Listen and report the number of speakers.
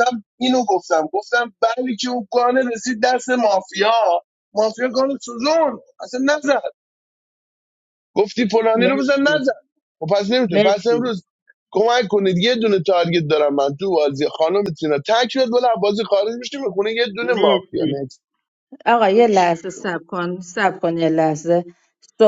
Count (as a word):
two